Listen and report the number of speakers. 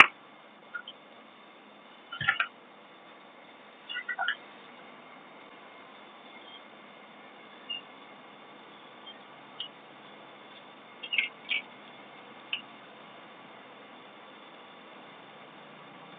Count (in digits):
0